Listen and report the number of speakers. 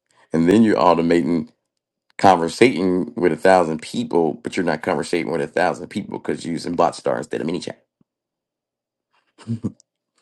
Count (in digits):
1